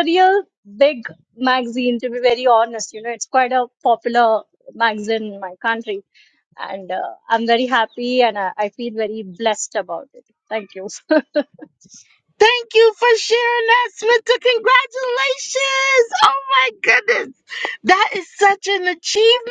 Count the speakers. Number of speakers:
2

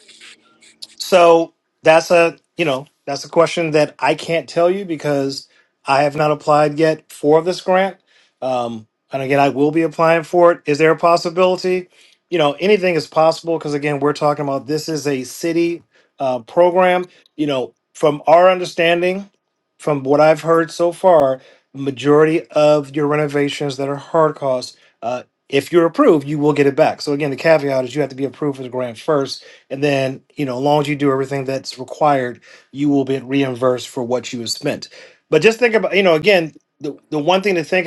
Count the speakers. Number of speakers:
1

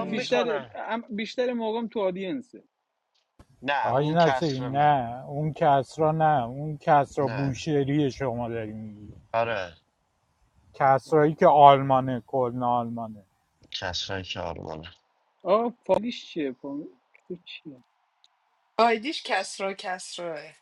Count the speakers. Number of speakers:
4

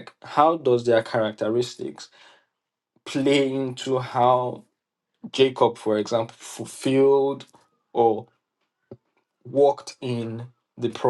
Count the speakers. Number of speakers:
1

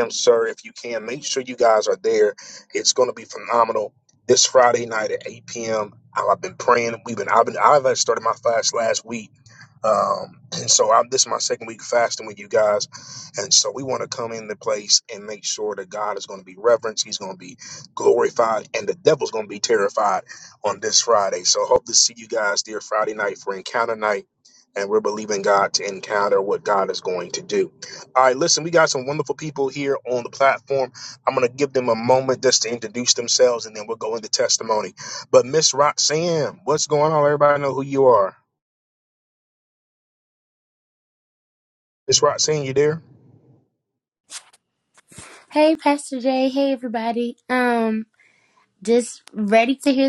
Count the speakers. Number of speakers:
2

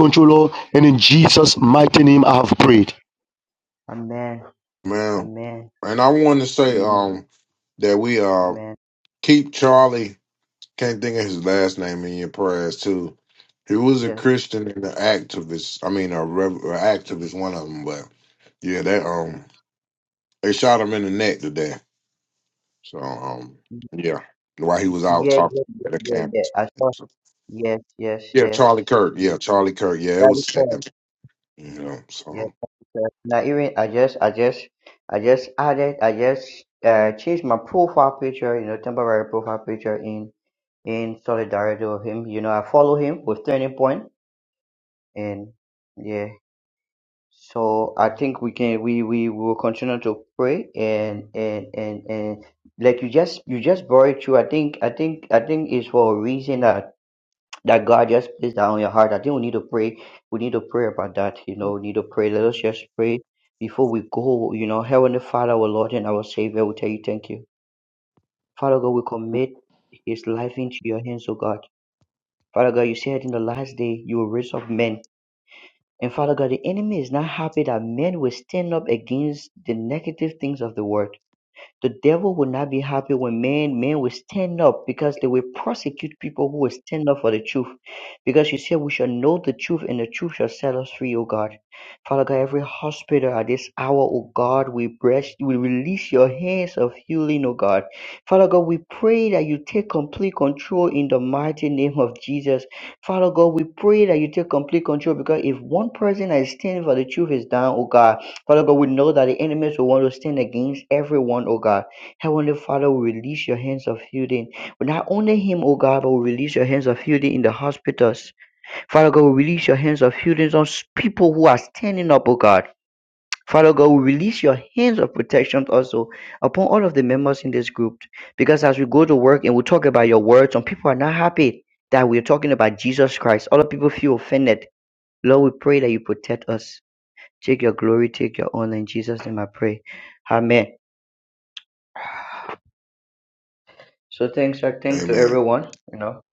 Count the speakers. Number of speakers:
3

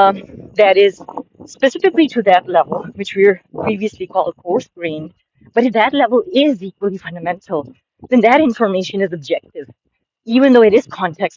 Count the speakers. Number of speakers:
1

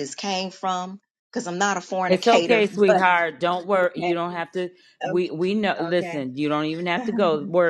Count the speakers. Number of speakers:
2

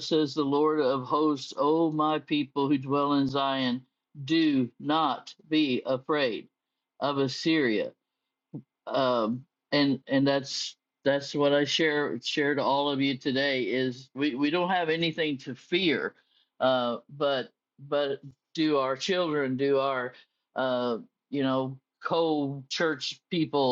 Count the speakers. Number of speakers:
1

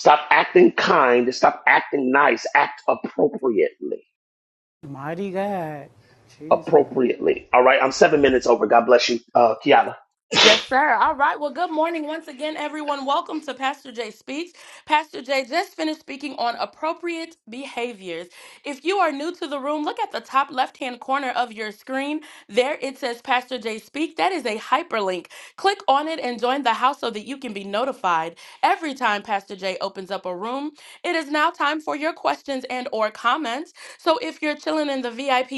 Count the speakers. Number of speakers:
3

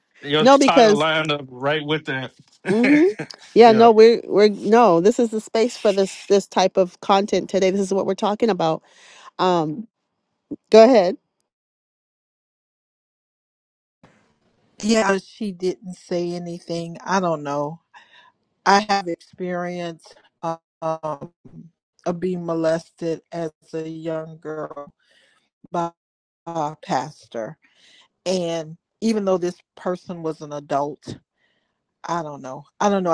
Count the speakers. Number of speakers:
3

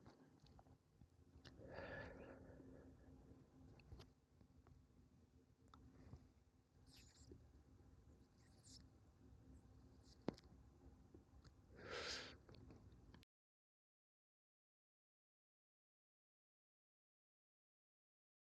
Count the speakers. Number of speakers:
0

